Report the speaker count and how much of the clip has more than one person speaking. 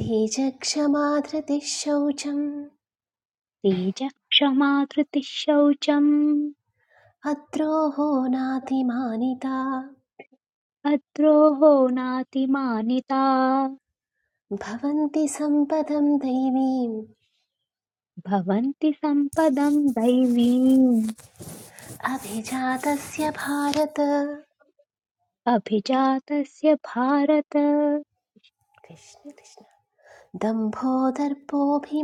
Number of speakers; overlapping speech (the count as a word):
two, no overlap